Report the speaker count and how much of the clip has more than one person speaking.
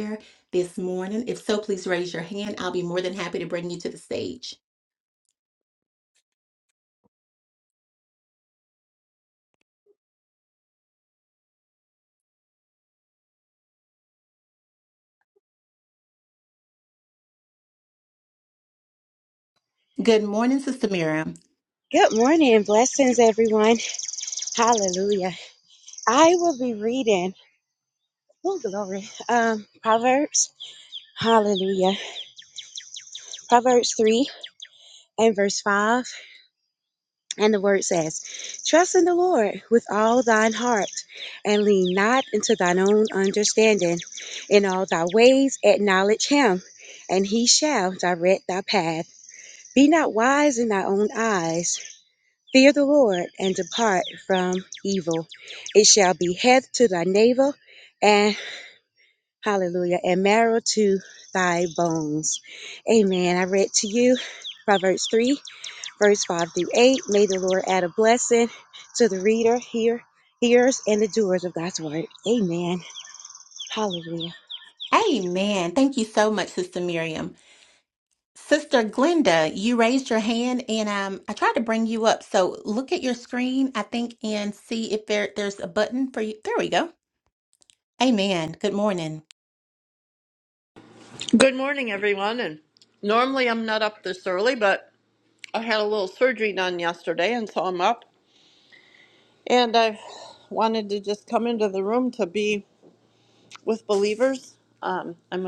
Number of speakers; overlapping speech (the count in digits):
3, no overlap